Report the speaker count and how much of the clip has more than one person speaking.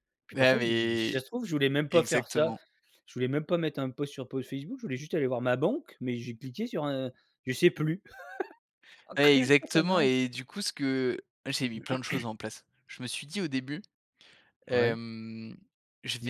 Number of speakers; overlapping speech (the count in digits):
2, about 17%